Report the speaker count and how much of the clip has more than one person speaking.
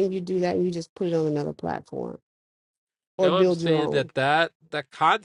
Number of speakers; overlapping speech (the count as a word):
two, about 16%